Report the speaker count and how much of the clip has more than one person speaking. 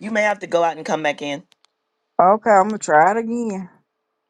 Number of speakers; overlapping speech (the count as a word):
two, no overlap